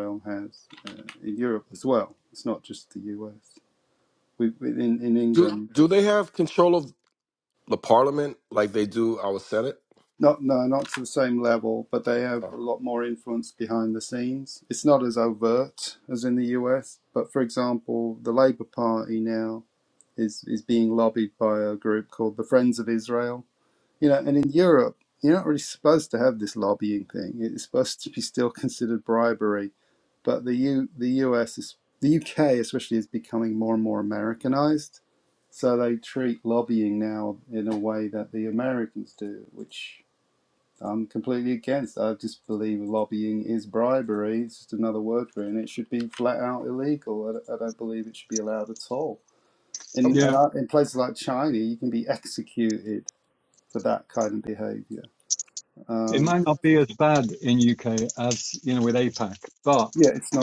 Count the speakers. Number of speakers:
three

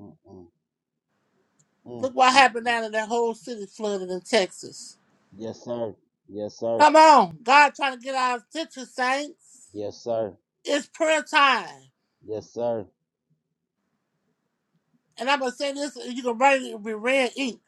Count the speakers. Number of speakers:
two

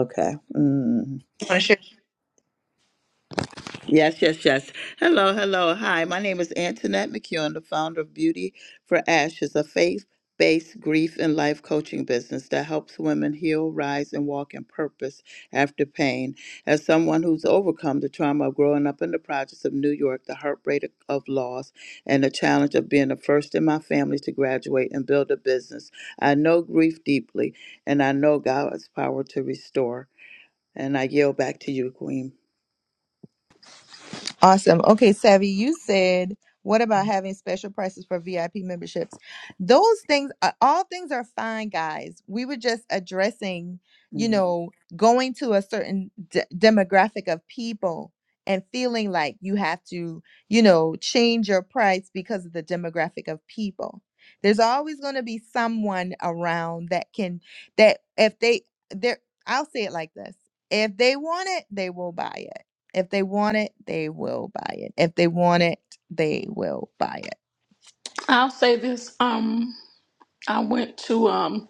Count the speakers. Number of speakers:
three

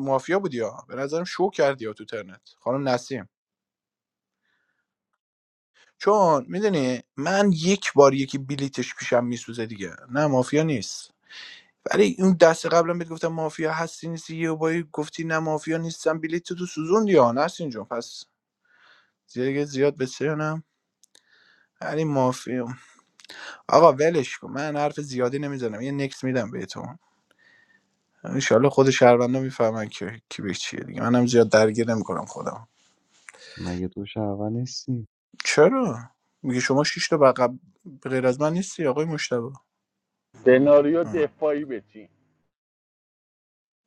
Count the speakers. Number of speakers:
three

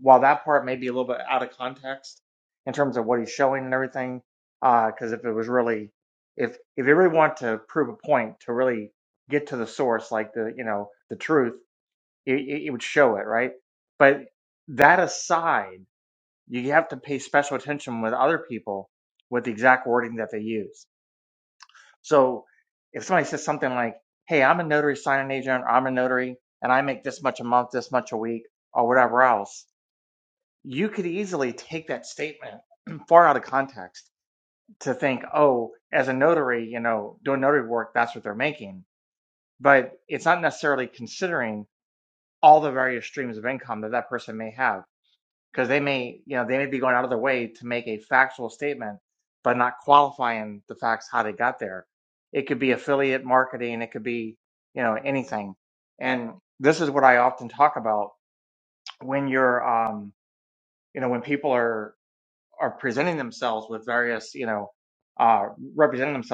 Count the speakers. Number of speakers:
one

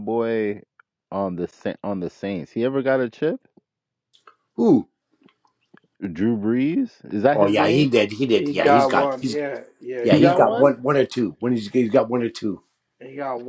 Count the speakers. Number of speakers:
three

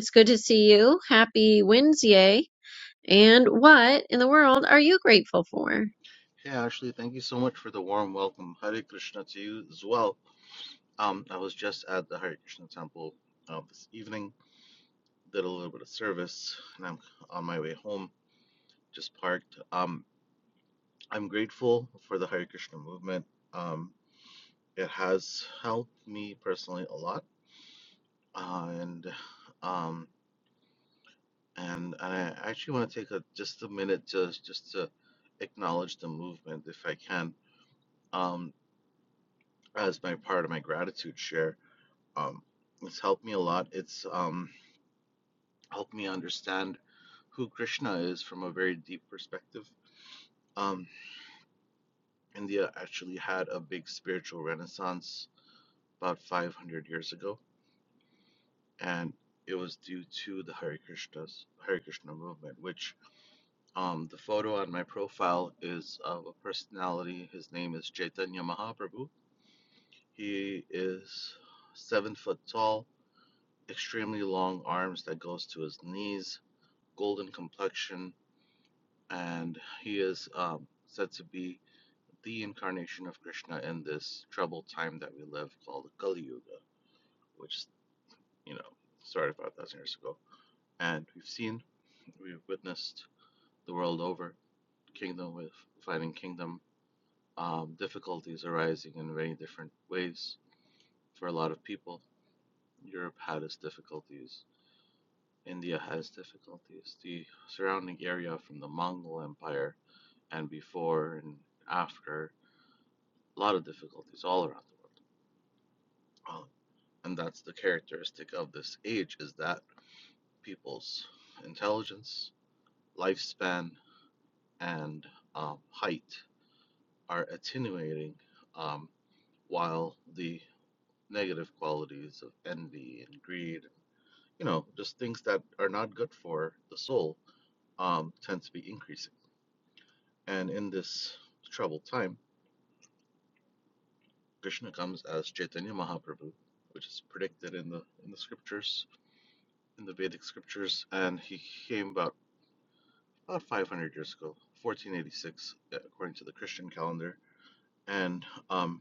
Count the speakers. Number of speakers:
two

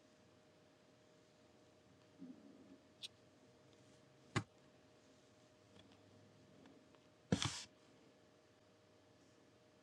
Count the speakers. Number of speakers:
zero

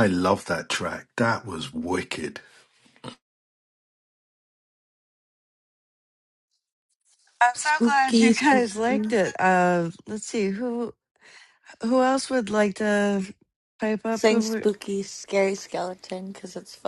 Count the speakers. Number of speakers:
three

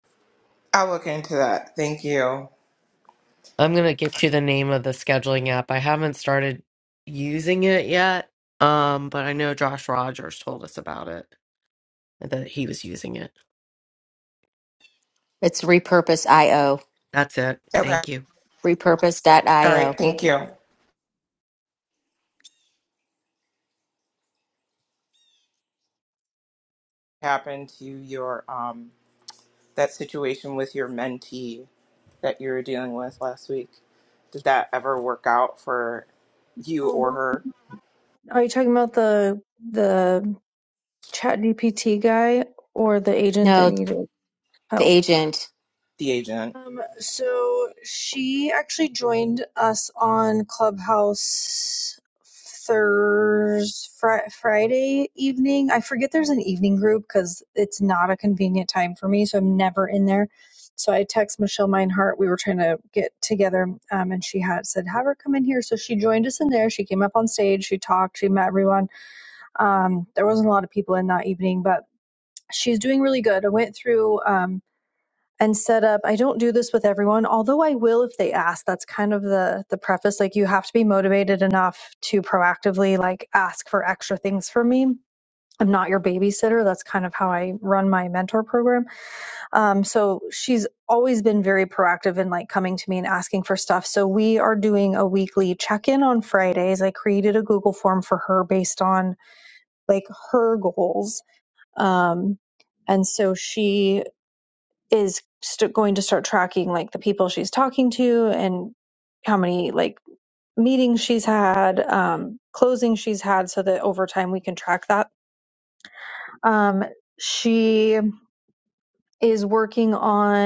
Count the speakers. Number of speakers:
four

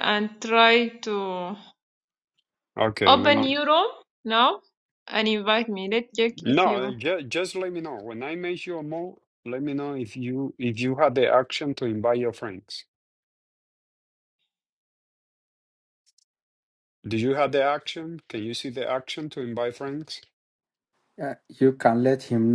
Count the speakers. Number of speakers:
three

